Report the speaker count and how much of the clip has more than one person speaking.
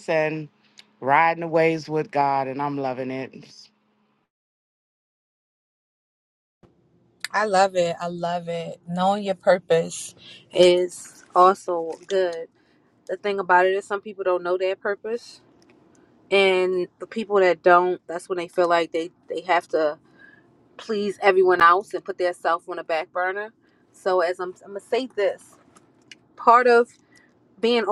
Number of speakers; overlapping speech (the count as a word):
two, no overlap